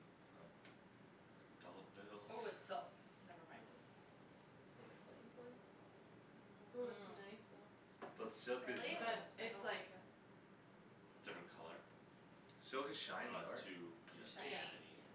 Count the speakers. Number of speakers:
four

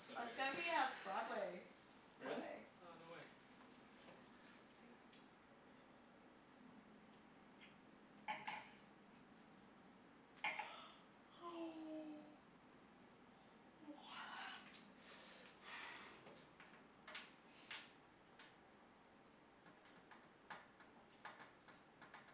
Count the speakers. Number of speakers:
two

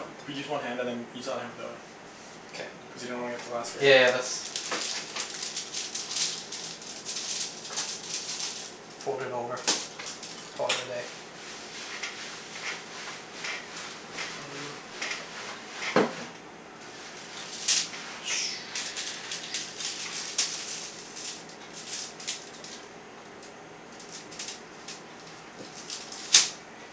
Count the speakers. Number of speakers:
two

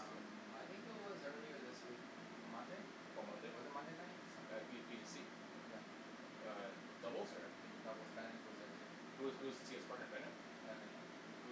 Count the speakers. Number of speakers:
two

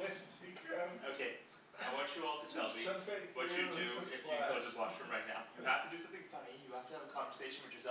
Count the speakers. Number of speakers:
two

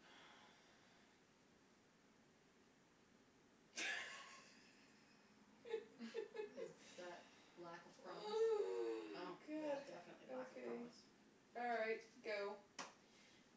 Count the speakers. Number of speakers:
two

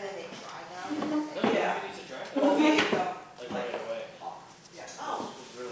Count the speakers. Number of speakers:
three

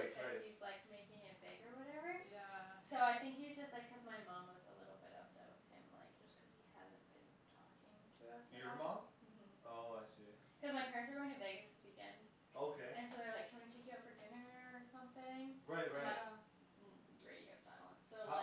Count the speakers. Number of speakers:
three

